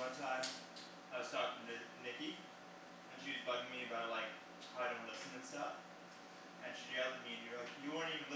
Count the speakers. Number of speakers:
1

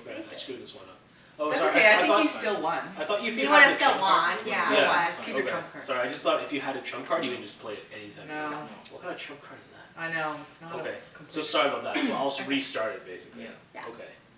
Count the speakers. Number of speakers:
4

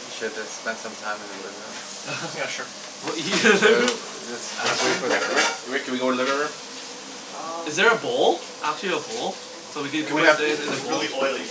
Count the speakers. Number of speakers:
4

